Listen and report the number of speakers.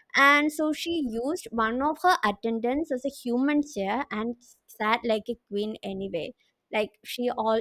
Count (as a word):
one